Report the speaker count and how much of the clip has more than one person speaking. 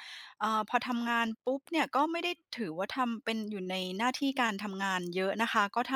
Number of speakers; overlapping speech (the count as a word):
one, no overlap